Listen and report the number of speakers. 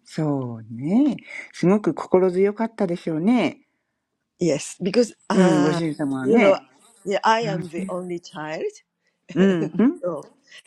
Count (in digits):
2